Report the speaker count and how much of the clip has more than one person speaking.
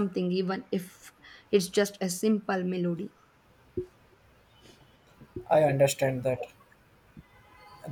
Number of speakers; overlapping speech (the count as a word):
two, no overlap